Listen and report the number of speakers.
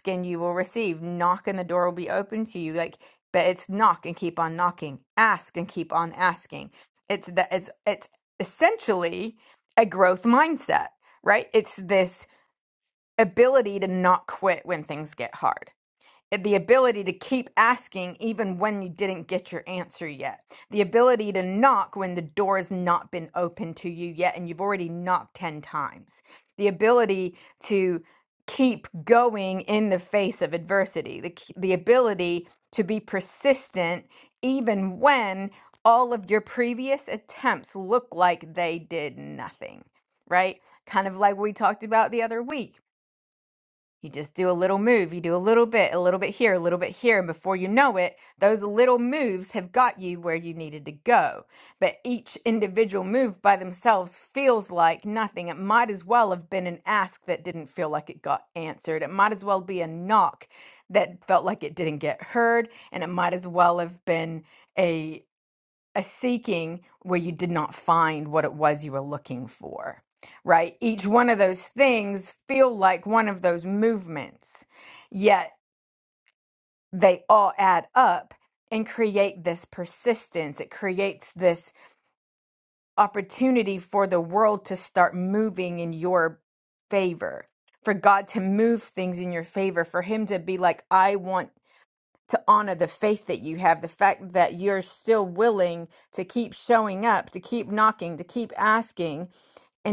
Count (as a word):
one